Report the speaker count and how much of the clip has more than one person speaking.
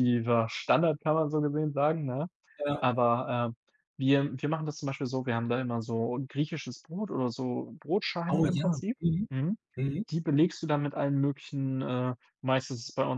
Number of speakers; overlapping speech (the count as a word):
two, about 3%